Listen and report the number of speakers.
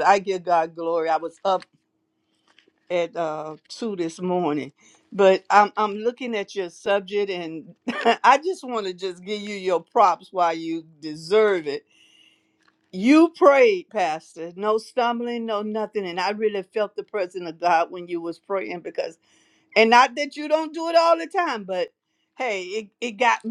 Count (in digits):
1